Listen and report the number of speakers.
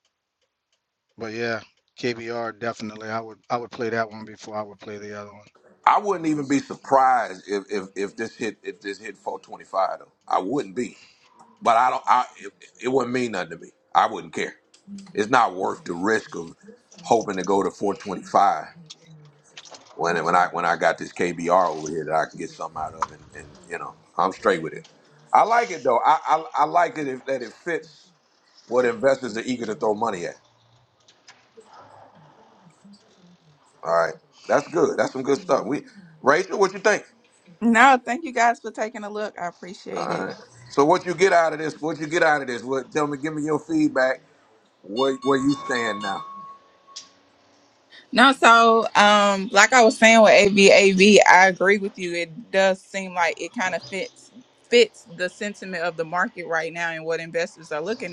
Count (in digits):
3